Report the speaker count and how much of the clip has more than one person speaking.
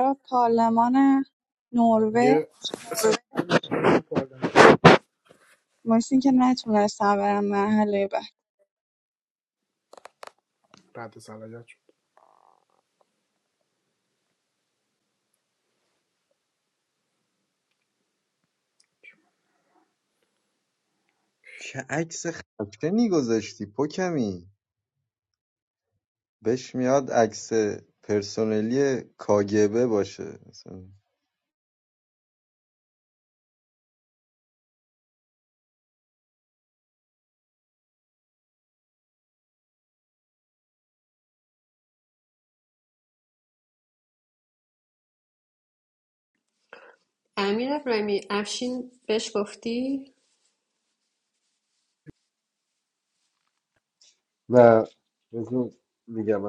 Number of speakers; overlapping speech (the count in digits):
5, under 1%